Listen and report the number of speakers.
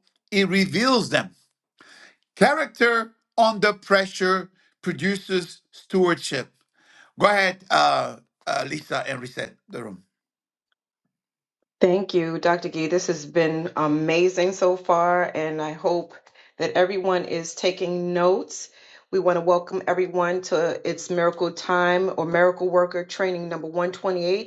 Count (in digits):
2